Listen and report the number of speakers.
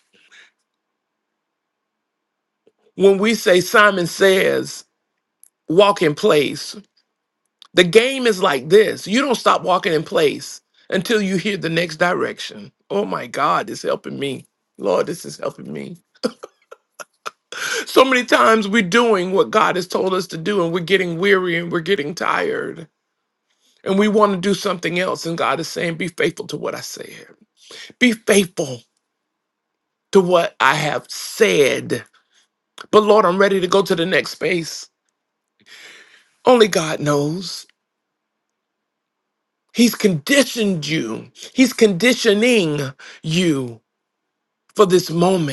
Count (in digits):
1